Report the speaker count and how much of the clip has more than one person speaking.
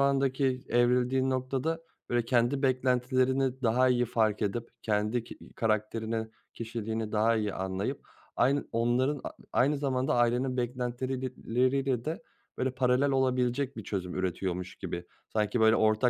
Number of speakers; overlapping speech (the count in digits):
1, no overlap